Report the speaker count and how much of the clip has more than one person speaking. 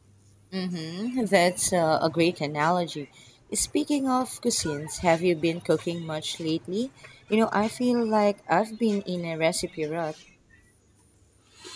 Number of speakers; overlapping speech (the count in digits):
1, no overlap